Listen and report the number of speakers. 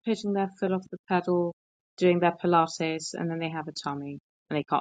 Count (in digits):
1